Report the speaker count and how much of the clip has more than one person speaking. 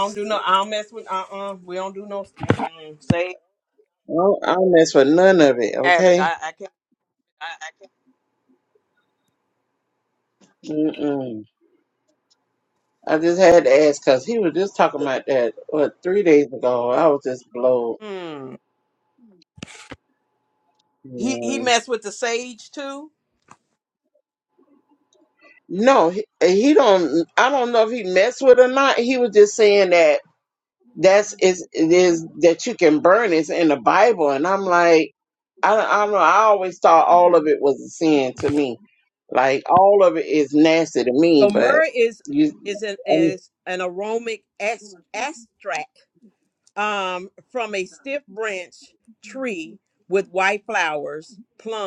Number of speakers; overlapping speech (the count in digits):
2, about 2%